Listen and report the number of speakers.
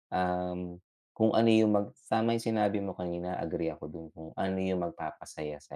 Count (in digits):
1